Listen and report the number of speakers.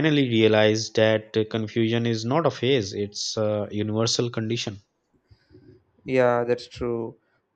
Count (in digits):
2